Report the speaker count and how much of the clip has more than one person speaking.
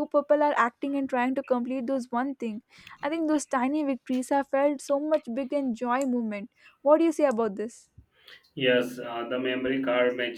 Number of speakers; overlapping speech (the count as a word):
two, no overlap